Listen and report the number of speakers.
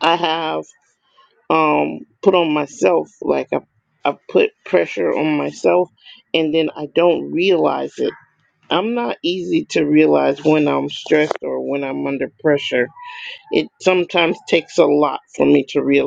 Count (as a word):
one